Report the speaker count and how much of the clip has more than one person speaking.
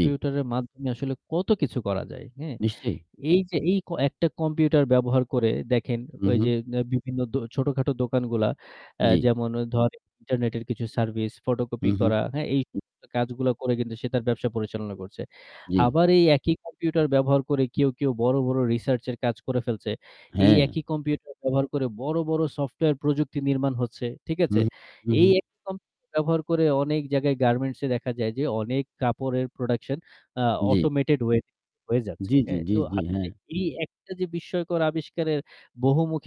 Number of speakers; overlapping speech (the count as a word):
two, about 8%